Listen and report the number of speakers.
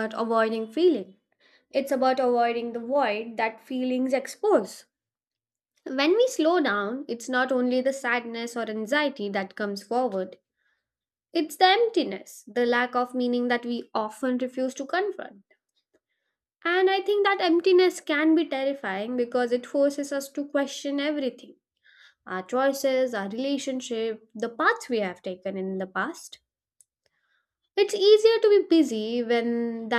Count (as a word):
one